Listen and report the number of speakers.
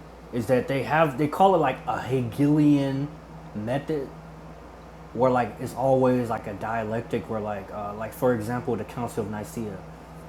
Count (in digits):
1